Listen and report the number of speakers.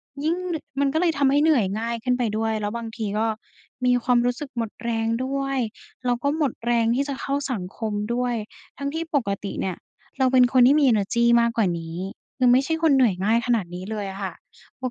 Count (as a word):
one